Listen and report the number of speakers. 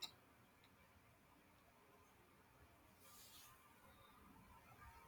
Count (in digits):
0